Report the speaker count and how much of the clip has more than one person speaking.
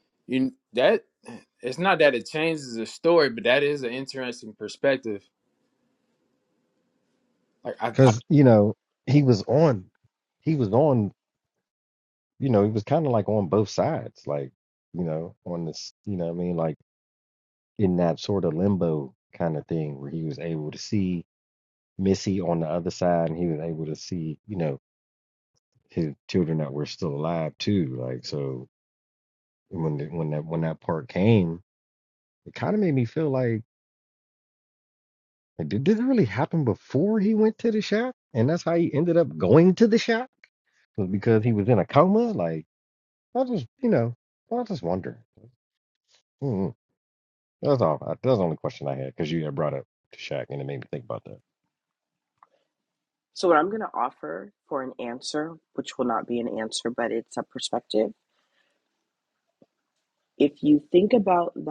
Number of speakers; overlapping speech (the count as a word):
three, under 1%